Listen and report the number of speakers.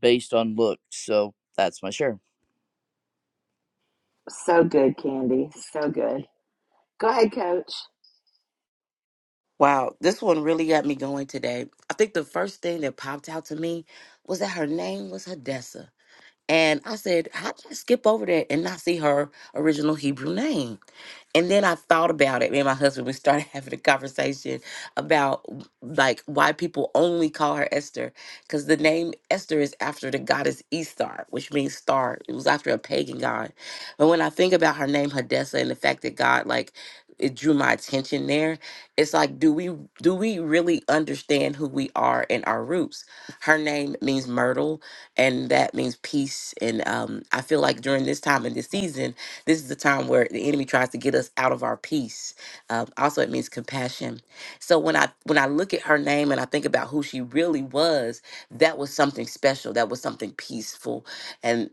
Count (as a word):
three